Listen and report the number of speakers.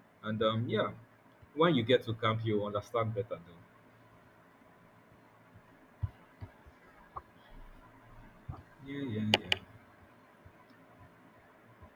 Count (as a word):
one